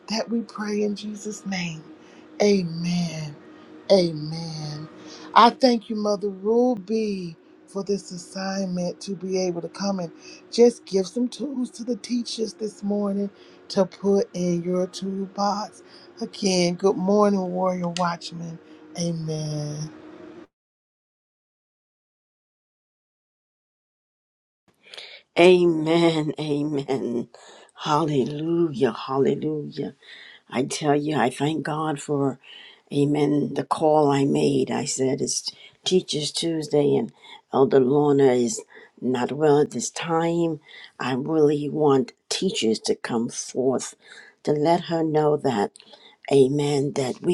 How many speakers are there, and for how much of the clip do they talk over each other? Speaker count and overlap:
2, no overlap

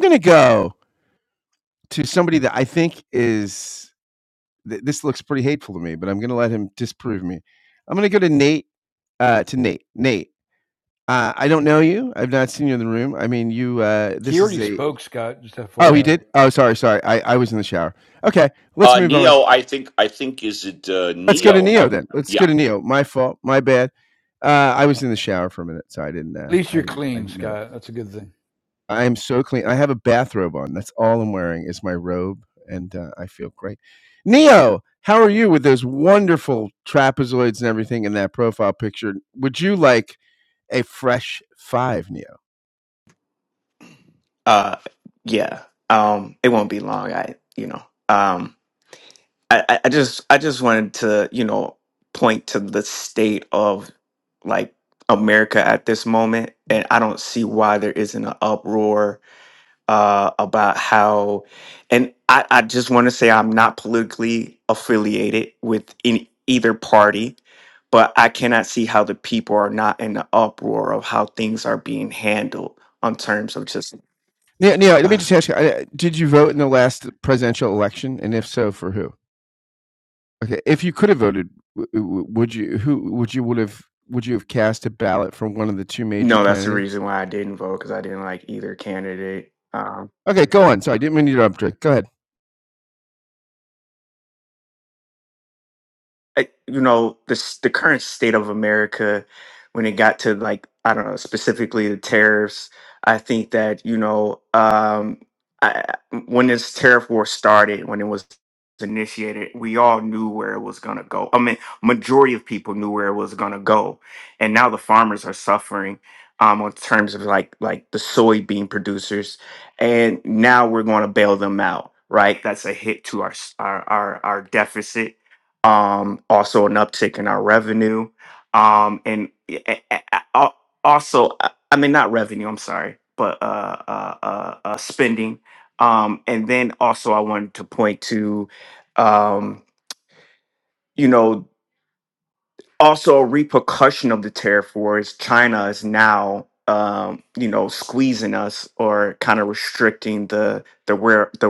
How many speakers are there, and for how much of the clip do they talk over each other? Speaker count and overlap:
4, about 3%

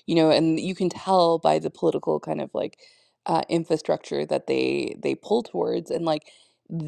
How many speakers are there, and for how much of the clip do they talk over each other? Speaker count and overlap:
1, no overlap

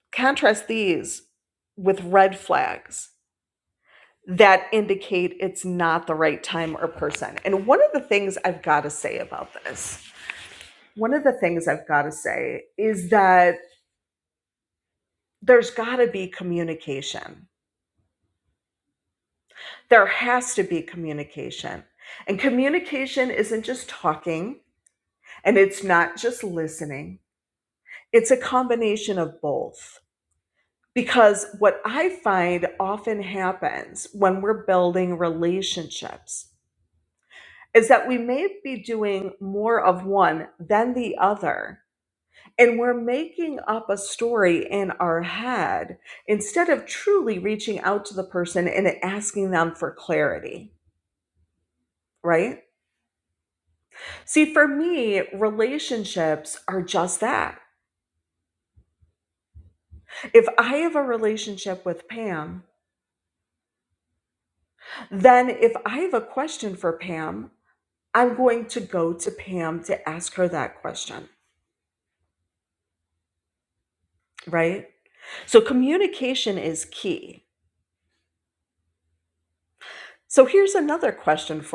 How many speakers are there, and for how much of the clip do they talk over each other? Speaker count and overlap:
1, no overlap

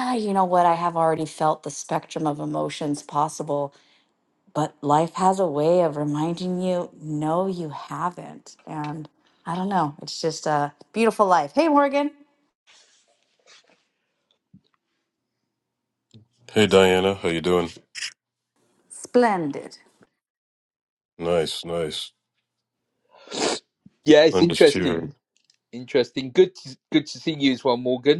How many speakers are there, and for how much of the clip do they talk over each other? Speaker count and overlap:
3, about 2%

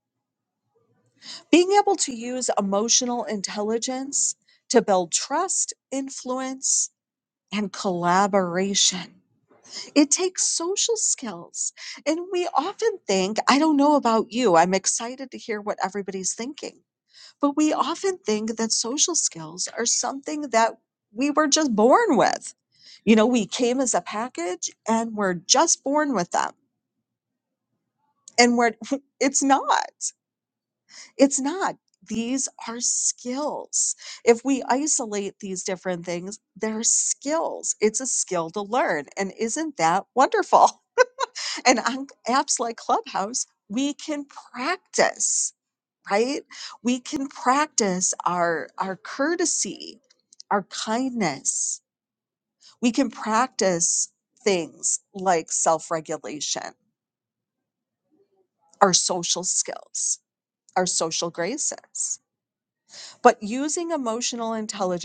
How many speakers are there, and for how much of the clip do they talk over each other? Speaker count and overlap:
1, no overlap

